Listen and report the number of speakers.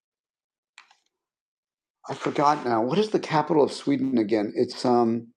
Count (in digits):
1